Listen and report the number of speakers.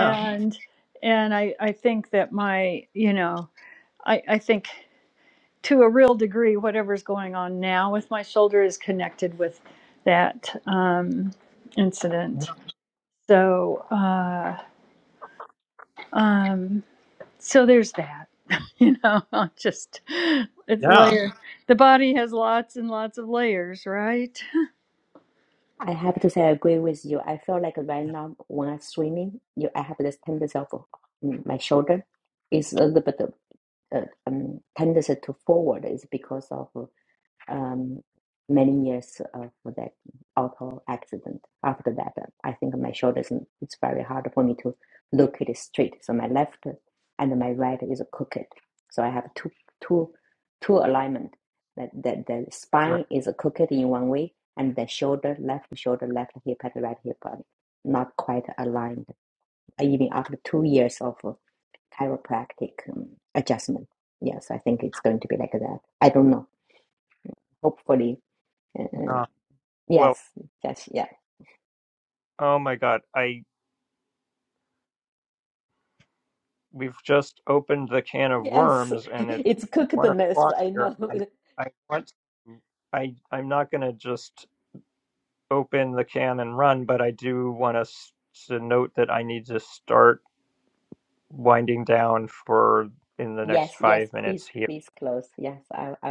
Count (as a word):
three